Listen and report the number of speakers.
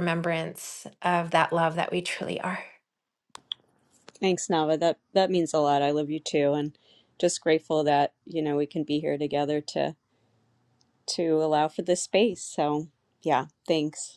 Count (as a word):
two